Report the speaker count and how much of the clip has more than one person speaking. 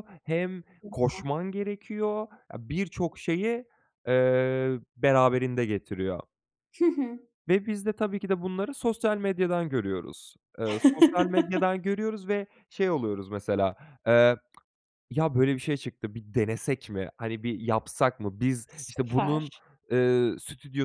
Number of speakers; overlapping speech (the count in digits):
2, about 3%